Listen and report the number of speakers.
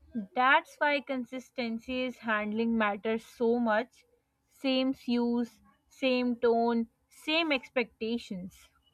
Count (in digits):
1